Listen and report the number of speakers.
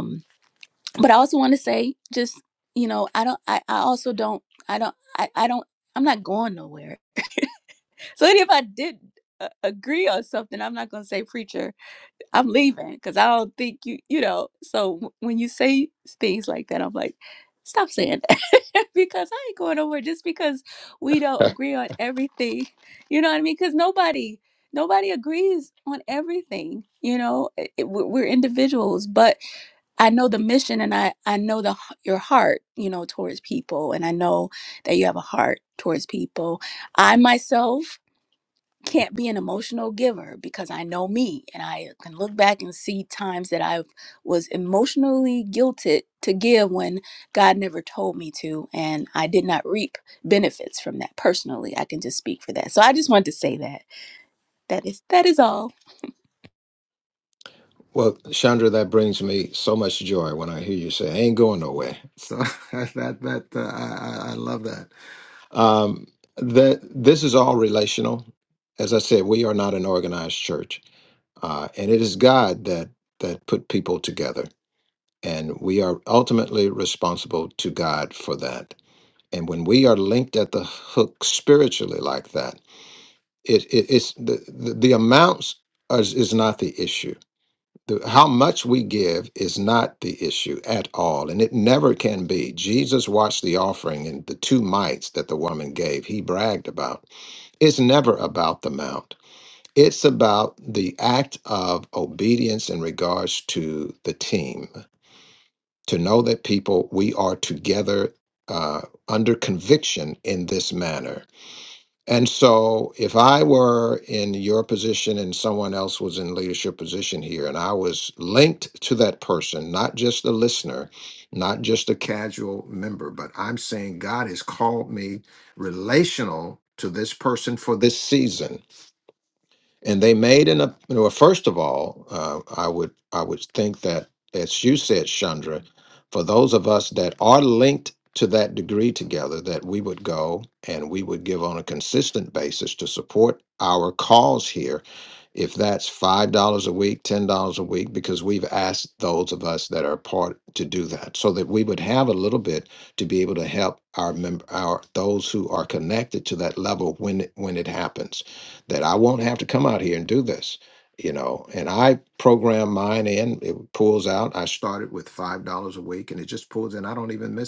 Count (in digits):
2